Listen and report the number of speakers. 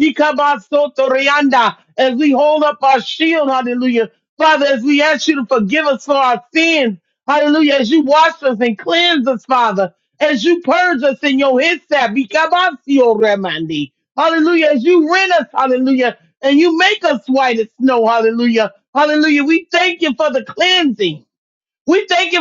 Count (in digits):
1